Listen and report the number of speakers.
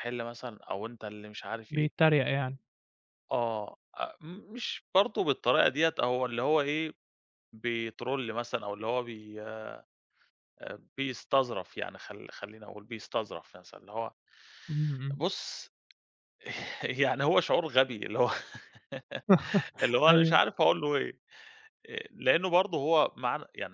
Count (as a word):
two